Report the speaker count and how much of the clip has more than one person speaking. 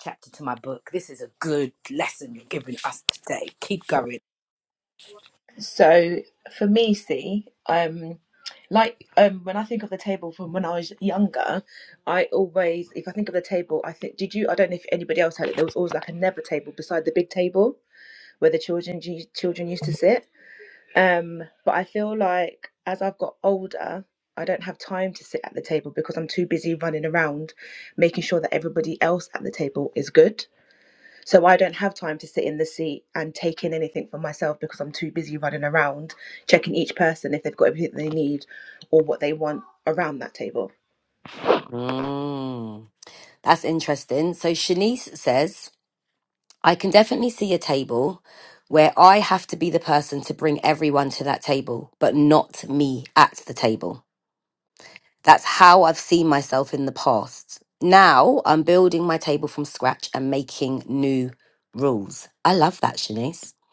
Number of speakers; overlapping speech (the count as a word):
three, no overlap